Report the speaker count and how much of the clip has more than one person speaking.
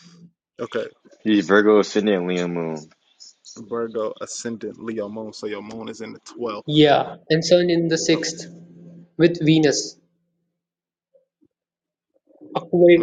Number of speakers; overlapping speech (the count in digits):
3, about 8%